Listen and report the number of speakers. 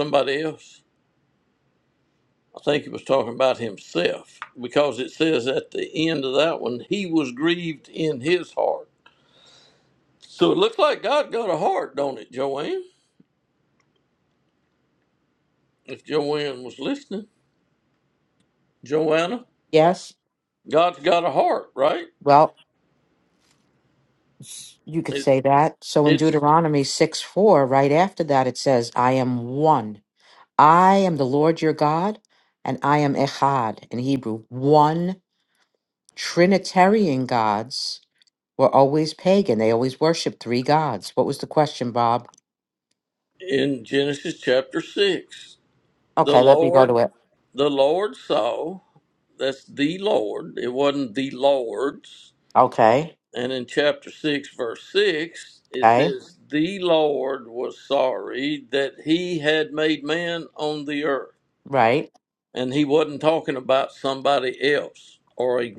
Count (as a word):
two